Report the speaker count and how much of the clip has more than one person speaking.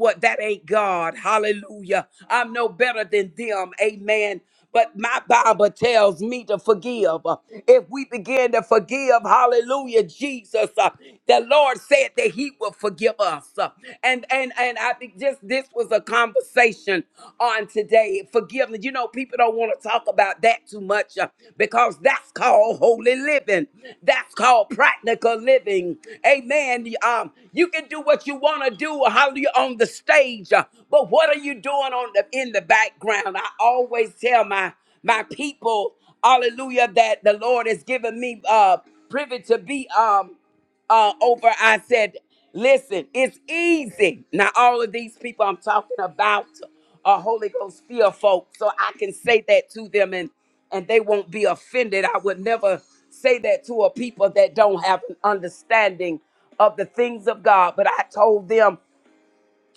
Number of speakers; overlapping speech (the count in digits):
1, no overlap